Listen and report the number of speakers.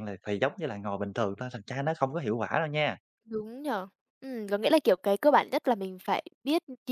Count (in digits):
2